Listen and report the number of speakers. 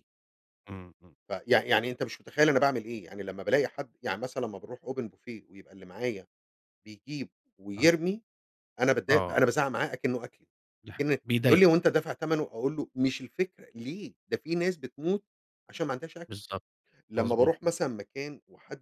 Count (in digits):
2